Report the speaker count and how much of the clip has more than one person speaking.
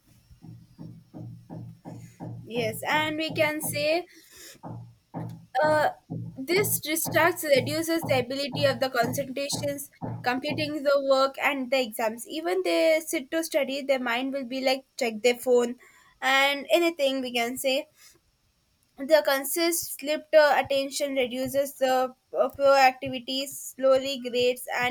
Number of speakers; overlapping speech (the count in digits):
1, no overlap